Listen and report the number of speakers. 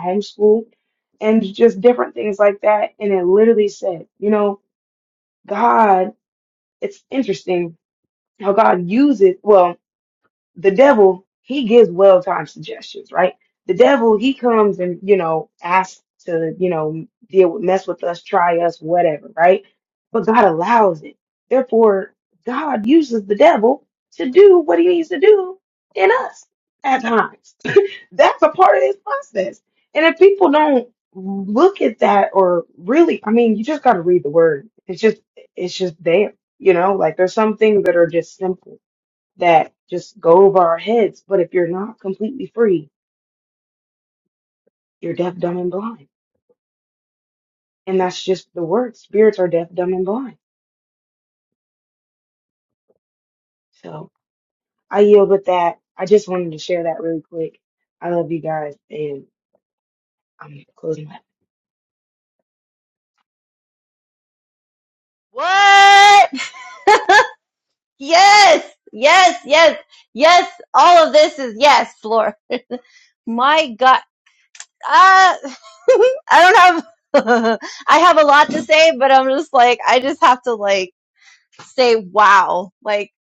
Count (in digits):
2